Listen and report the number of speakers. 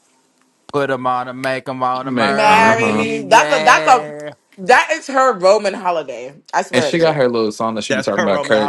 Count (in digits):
3